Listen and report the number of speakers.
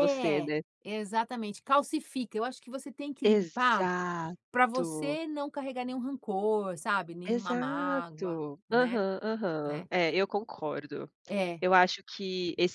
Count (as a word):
two